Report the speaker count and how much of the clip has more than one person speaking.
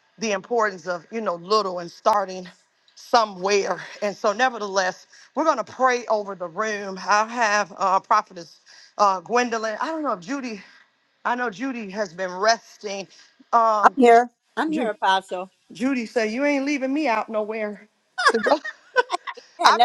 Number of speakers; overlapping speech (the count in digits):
2, about 3%